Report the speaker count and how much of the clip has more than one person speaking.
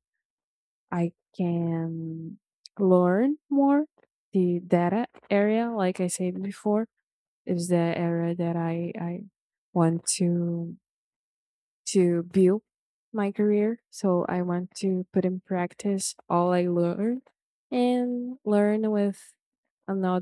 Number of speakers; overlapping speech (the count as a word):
one, no overlap